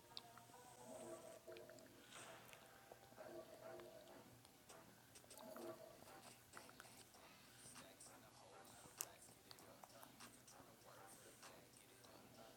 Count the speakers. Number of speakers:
zero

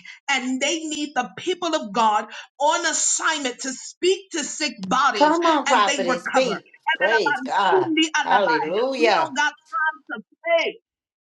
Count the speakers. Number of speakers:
two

